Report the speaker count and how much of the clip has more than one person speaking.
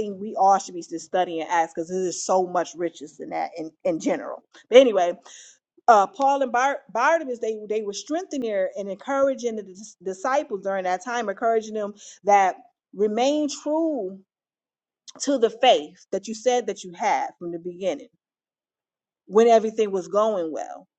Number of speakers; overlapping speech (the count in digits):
1, no overlap